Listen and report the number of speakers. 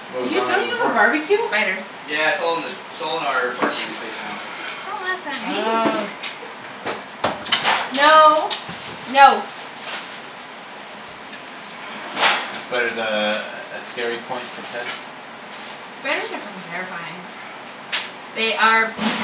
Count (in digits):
4